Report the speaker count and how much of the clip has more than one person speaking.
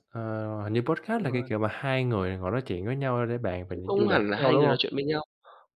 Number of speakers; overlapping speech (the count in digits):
2, about 24%